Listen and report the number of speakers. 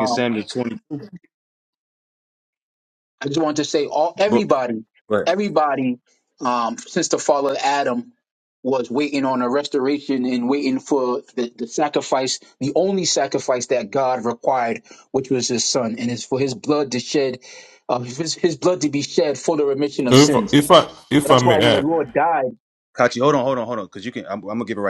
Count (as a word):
three